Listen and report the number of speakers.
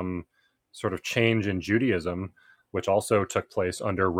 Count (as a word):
one